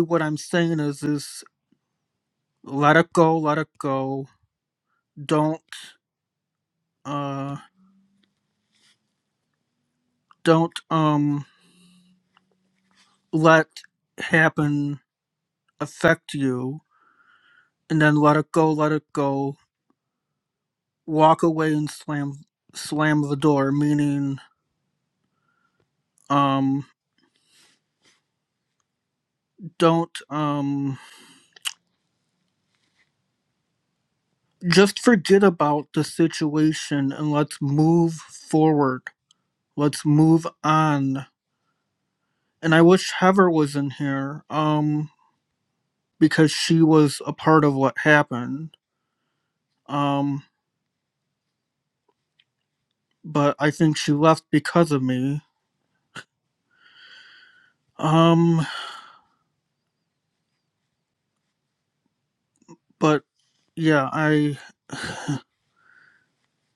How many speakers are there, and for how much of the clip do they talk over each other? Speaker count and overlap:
1, no overlap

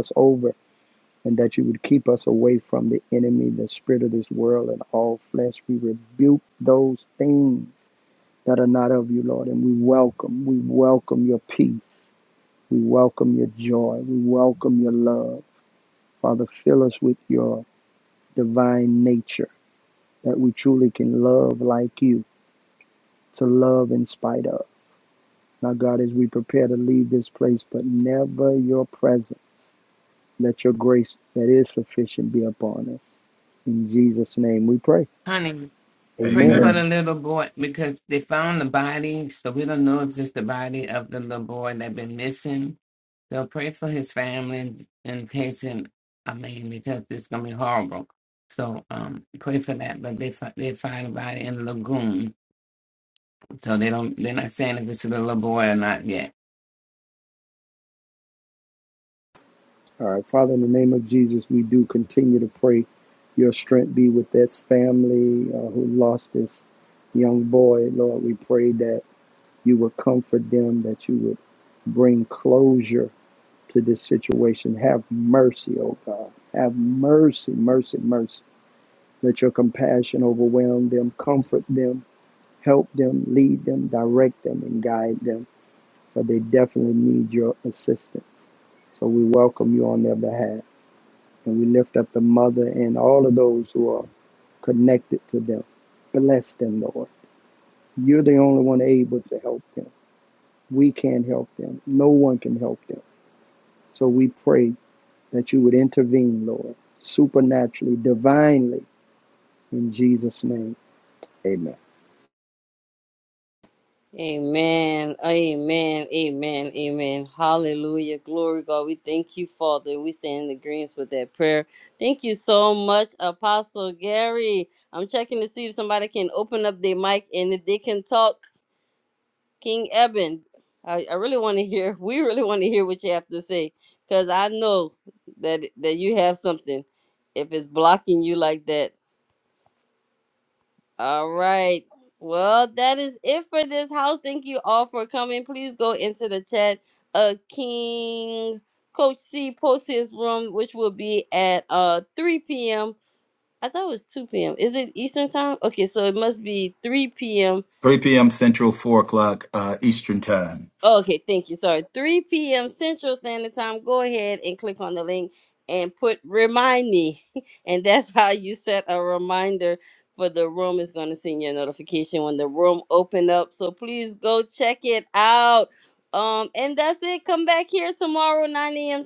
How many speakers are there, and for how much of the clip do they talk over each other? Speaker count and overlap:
4, under 1%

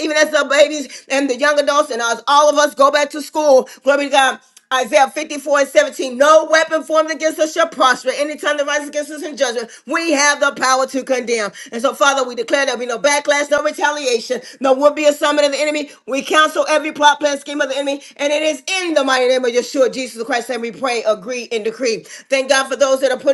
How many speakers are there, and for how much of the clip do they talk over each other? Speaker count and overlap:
1, no overlap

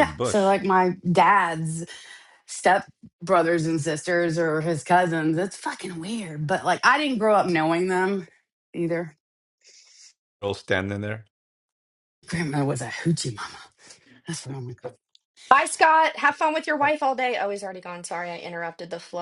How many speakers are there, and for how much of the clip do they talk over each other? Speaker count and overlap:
3, about 3%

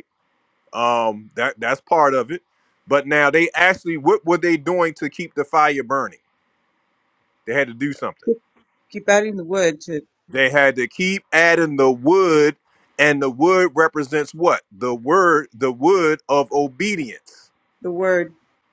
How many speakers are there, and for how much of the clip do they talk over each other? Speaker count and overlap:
2, no overlap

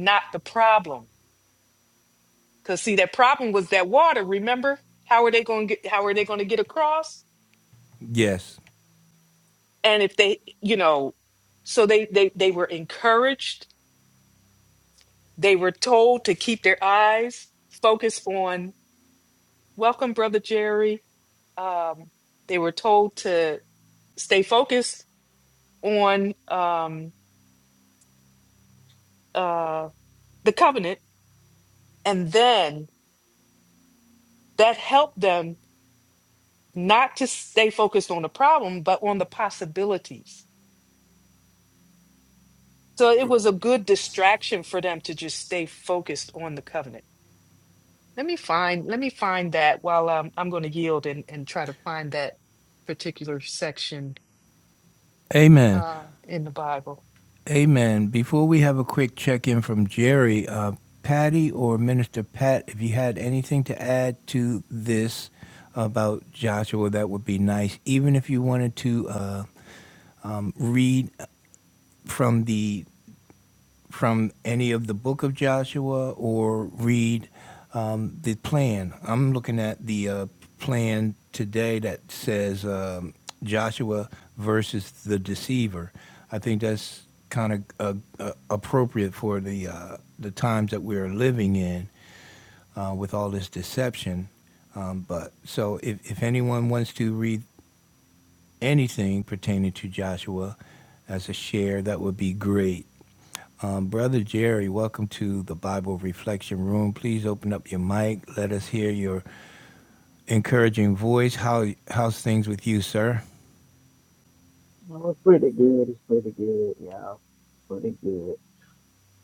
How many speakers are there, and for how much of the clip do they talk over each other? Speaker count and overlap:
3, under 1%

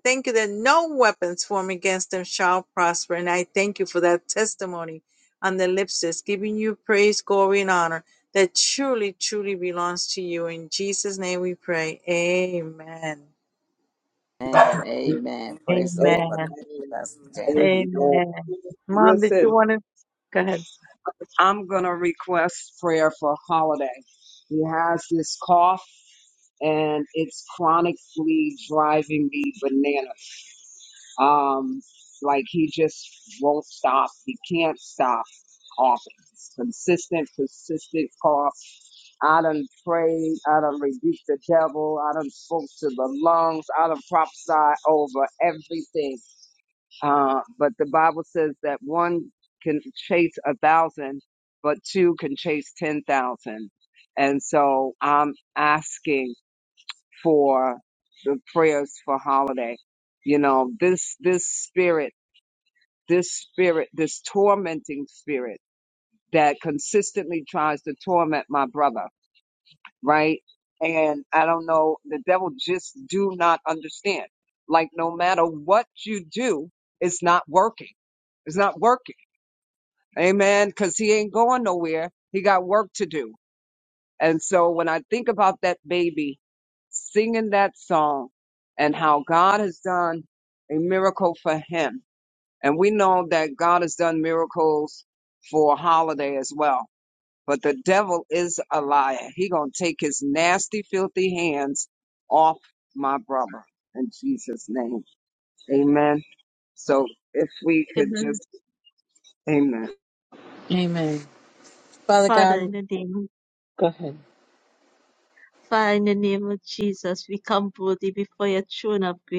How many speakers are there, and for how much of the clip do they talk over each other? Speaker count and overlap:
4, about 3%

